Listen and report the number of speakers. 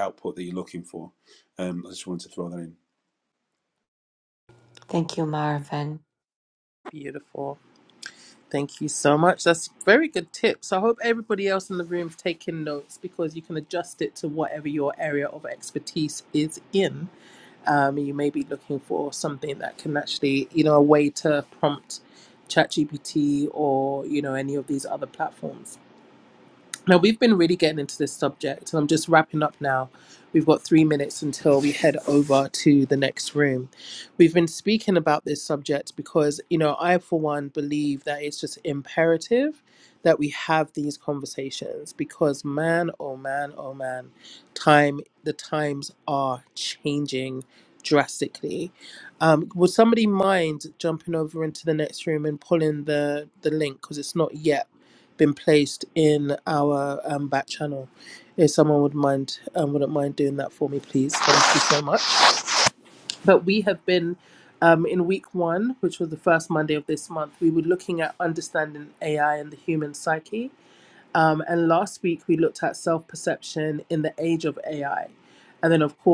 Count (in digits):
3